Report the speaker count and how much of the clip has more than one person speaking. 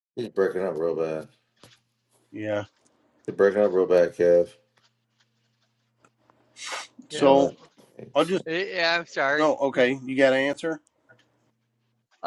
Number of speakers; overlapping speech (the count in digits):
3, about 6%